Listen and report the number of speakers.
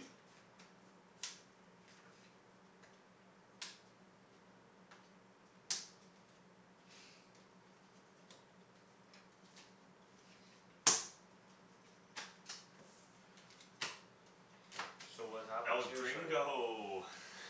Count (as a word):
two